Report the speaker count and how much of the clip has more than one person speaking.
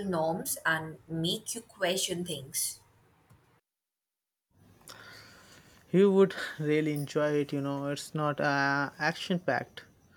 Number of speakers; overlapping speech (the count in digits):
2, no overlap